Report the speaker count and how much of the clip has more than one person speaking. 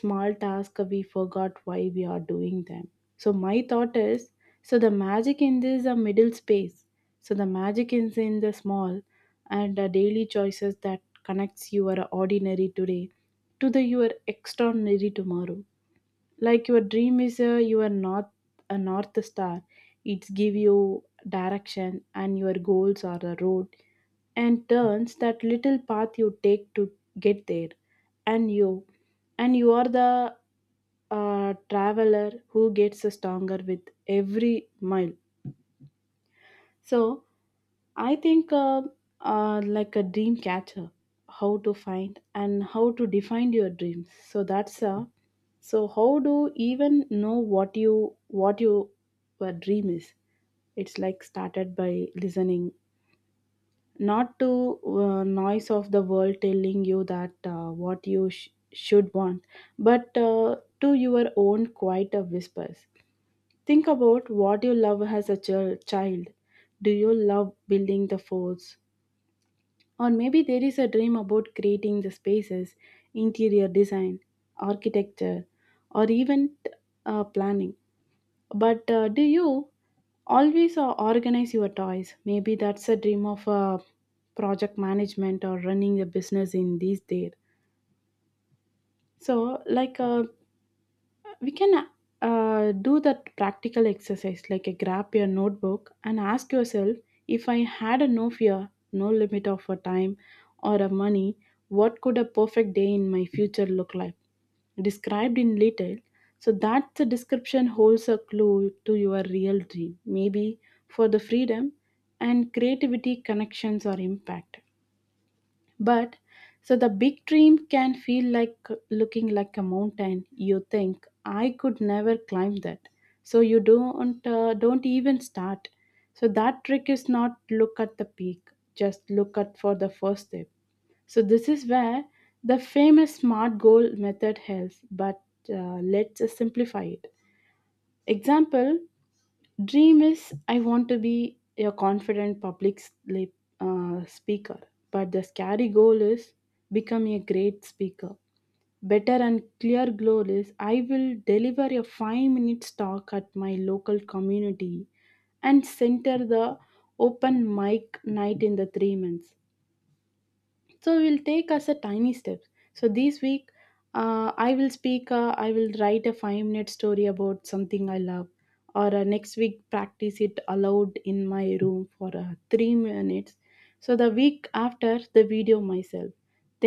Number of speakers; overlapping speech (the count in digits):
1, no overlap